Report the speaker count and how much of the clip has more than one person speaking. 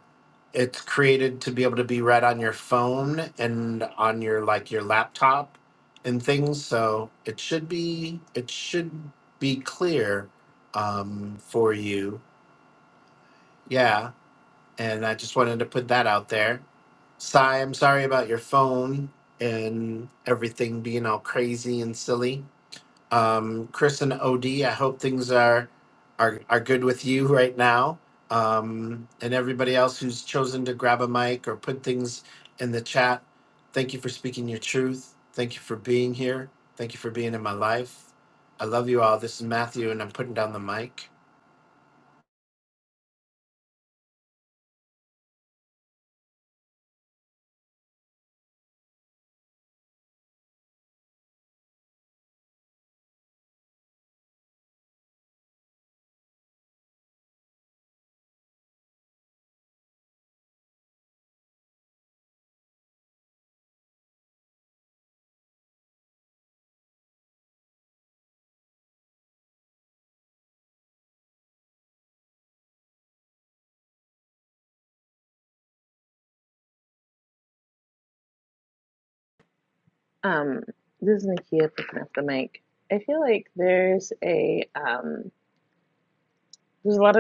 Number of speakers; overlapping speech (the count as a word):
two, no overlap